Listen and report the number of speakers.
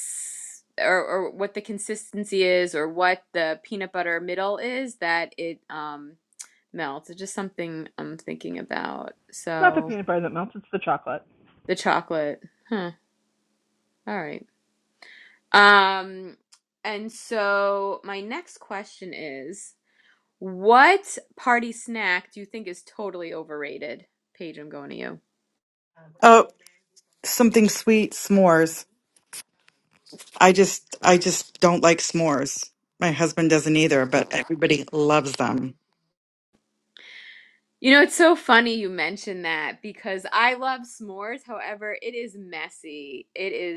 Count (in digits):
3